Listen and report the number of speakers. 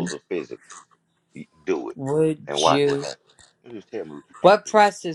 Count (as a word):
two